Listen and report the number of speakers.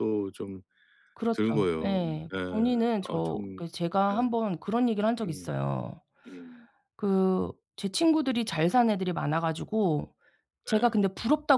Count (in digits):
2